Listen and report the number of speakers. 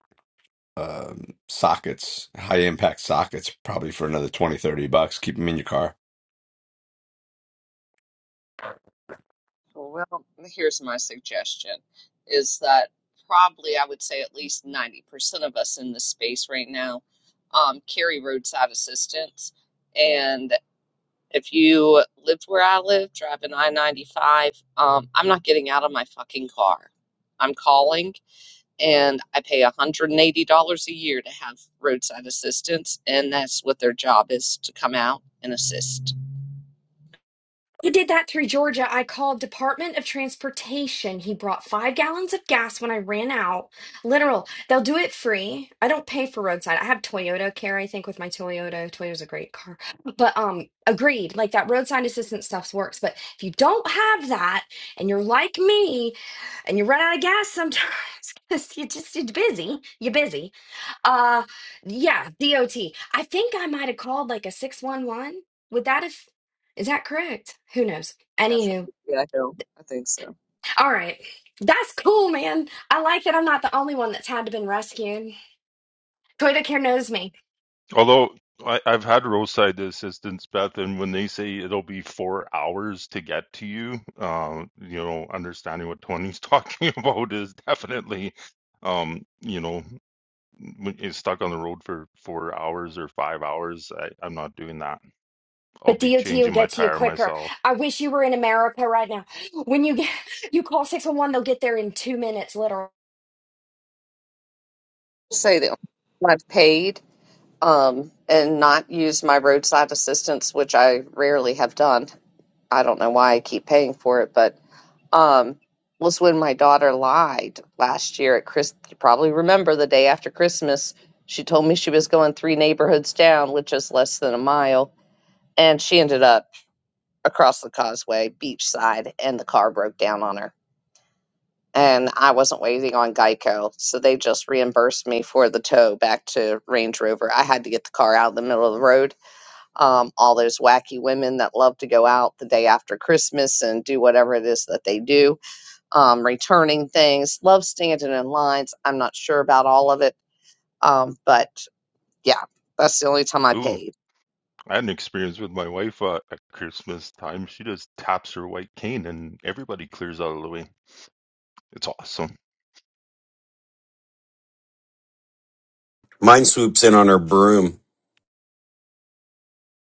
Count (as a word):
five